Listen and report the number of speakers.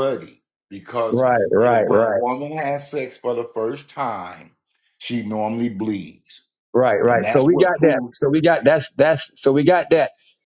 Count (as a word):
two